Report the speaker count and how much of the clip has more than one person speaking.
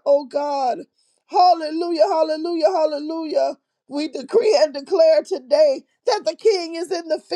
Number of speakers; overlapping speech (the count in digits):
1, no overlap